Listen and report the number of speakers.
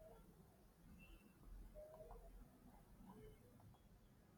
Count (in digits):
0